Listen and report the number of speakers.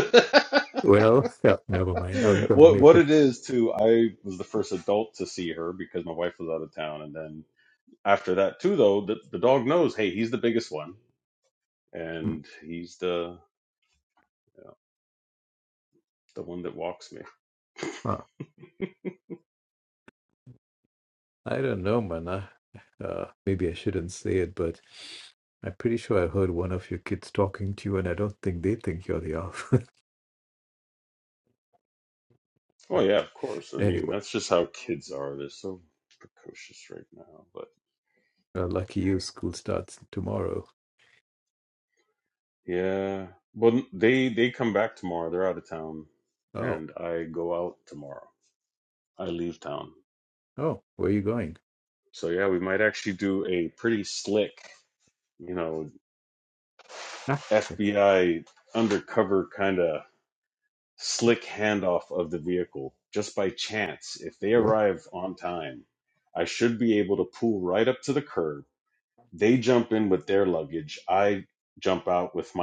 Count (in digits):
2